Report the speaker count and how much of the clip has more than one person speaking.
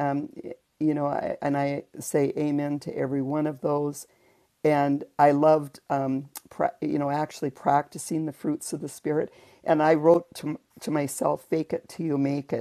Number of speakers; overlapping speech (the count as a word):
one, no overlap